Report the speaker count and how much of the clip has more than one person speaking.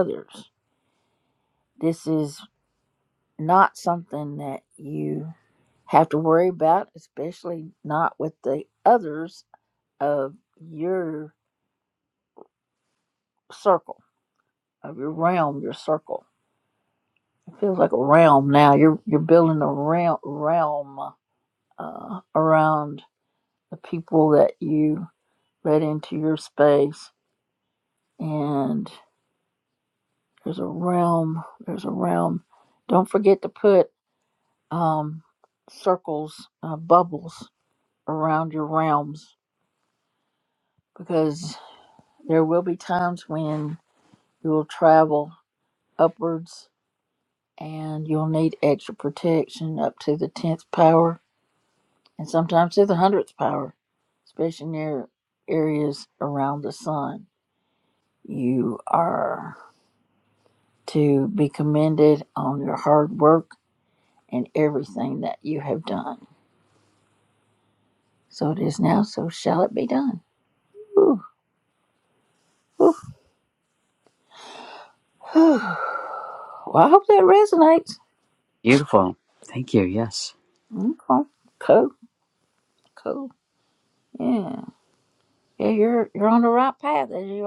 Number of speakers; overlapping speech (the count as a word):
two, no overlap